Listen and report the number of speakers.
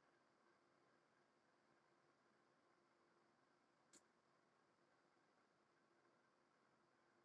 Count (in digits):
0